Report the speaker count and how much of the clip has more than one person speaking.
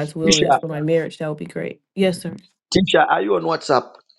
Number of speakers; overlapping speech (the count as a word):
two, about 9%